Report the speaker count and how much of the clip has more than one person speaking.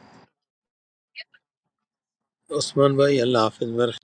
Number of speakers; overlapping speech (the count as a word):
one, no overlap